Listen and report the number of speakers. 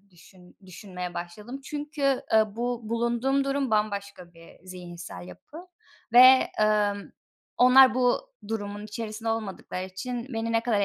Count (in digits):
1